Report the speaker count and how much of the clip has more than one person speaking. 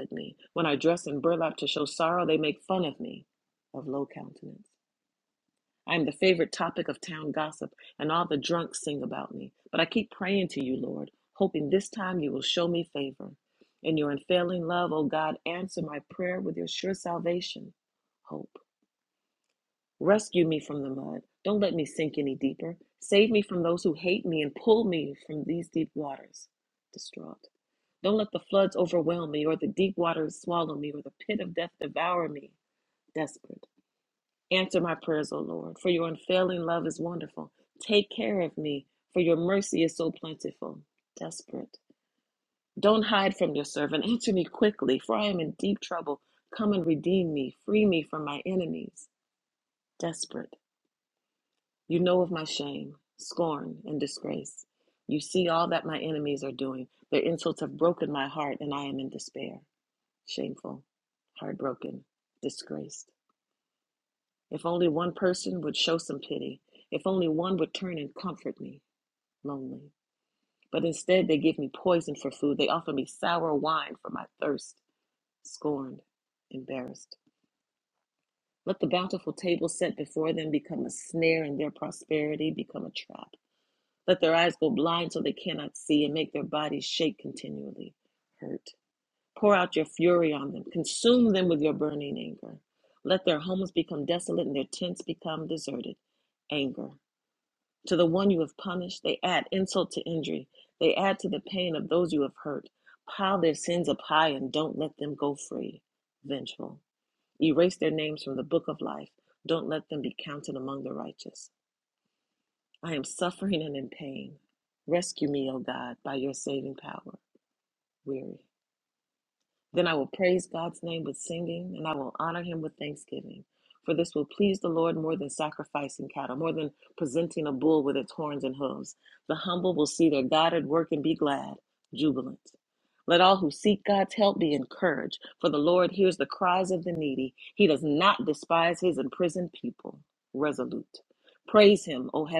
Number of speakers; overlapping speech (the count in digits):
1, no overlap